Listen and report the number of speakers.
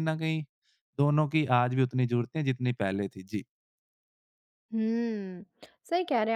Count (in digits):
2